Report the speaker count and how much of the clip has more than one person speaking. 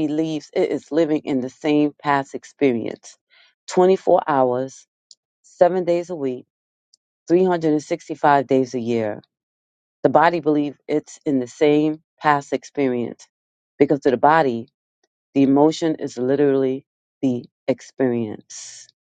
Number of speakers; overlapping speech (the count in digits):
1, no overlap